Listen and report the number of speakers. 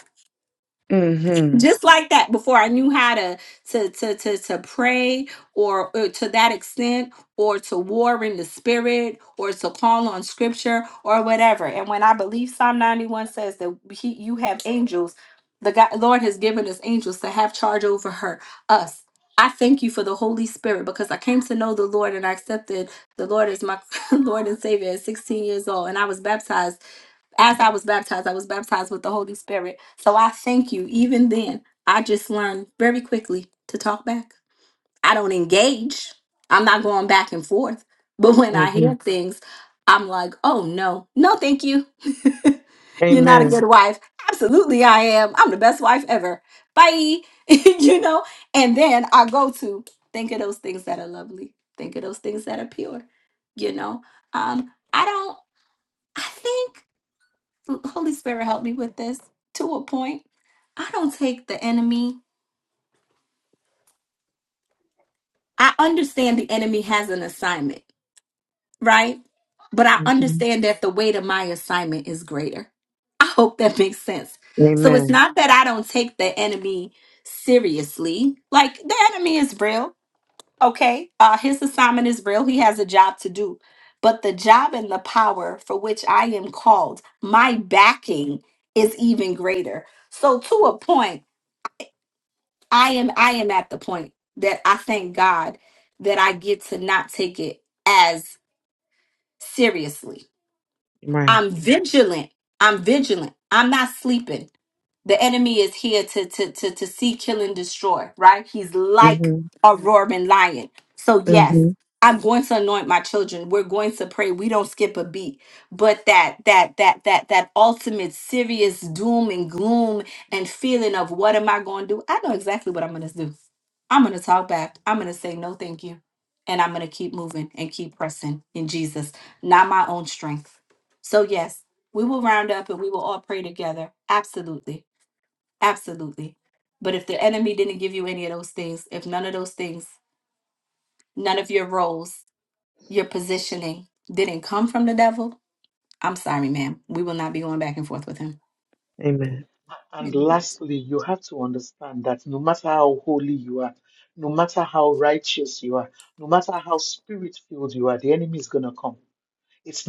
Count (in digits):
3